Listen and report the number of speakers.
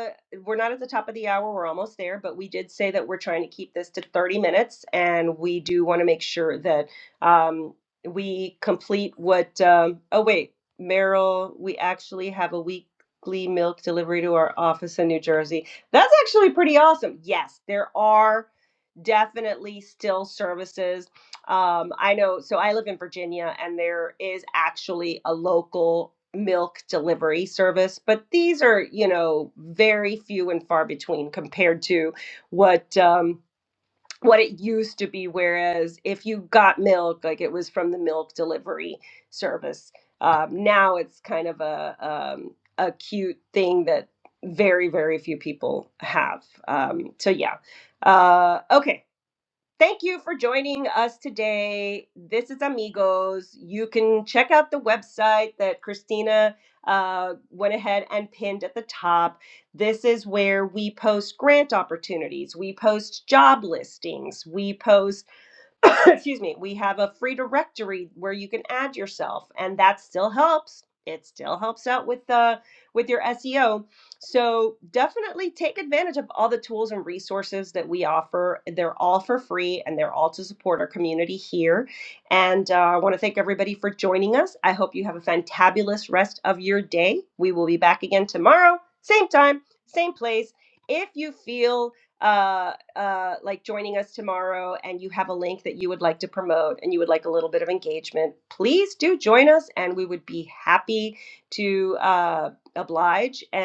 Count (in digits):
1